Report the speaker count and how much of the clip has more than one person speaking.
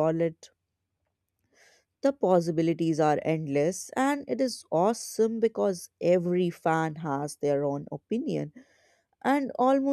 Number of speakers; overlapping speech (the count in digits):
1, no overlap